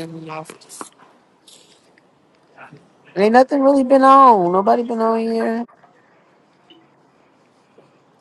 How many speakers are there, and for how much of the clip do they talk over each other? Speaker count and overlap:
1, no overlap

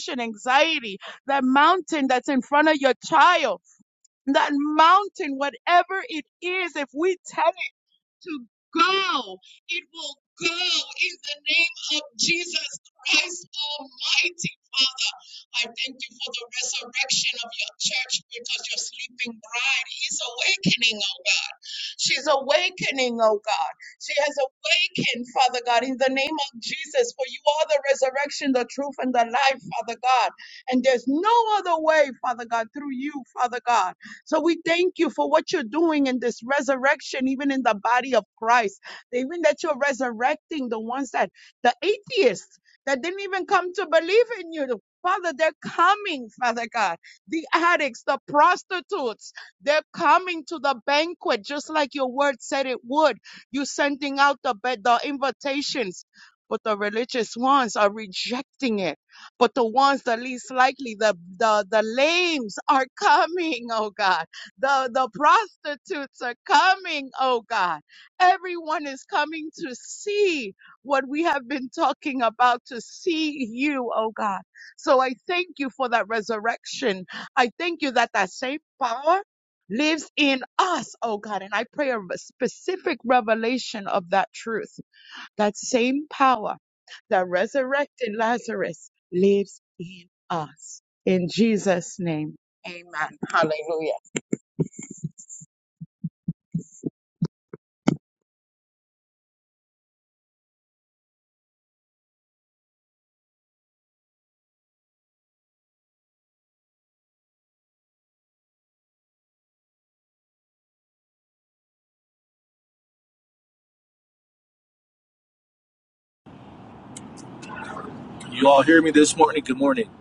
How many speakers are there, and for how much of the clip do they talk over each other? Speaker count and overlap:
2, no overlap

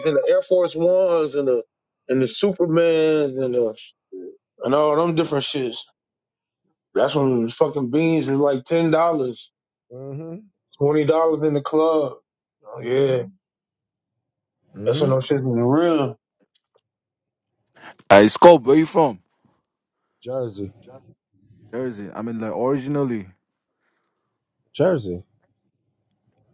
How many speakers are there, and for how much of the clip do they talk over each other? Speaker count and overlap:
3, about 1%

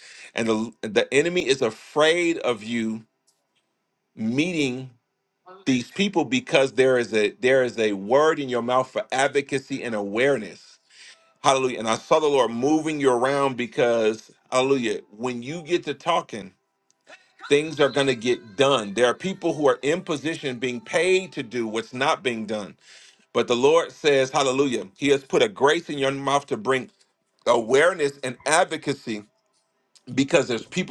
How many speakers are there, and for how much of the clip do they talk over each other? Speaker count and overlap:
1, no overlap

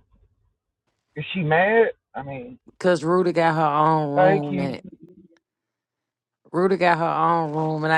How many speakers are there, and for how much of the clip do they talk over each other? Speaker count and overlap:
2, about 7%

